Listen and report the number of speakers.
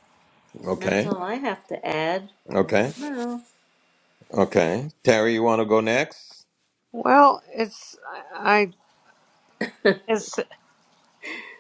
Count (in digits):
3